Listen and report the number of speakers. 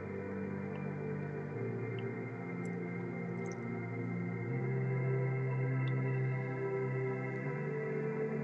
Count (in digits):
0